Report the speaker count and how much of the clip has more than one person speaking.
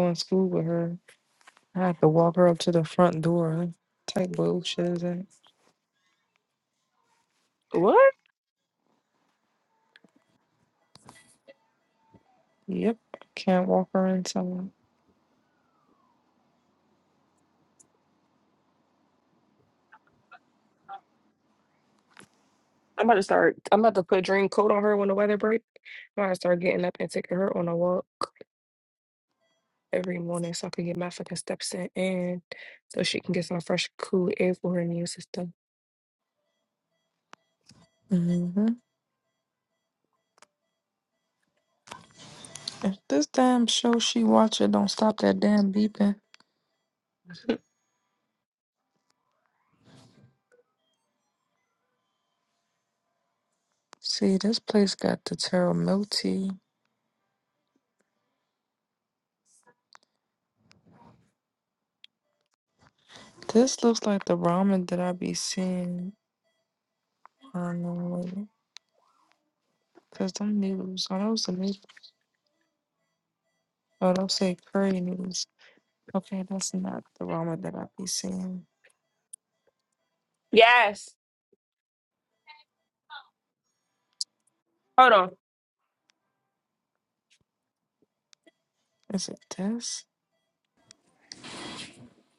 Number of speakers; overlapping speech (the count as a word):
two, no overlap